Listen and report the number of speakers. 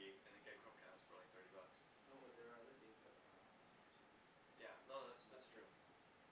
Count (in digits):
2